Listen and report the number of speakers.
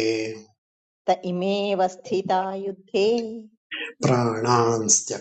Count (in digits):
2